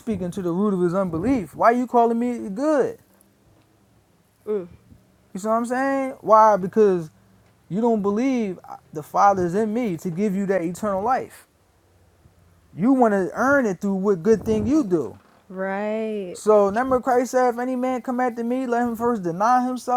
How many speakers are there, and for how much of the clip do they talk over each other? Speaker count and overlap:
2, no overlap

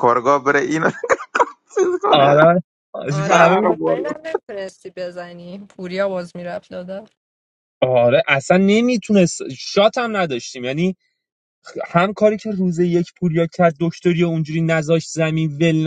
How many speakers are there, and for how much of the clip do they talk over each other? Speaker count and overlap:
3, about 9%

